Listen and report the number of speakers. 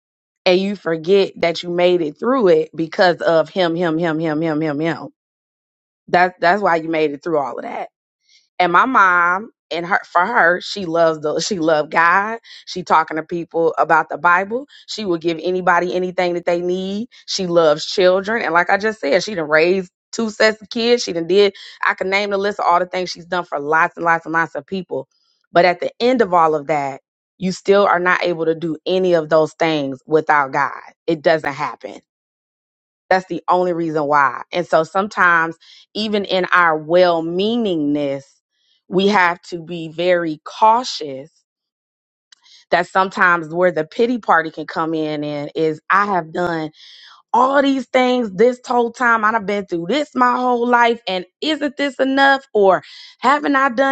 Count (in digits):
1